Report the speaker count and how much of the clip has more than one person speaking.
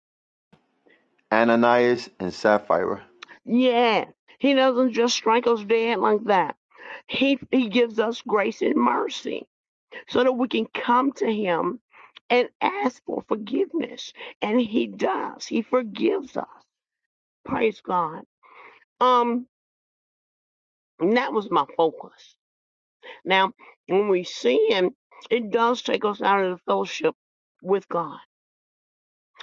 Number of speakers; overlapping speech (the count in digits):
2, no overlap